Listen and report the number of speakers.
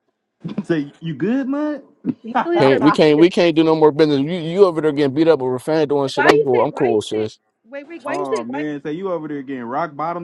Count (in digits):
3